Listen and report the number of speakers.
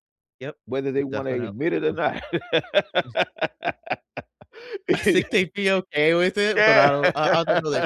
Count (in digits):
2